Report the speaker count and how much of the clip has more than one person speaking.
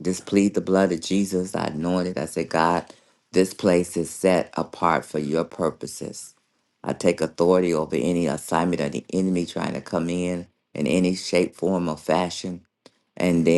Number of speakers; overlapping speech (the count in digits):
1, no overlap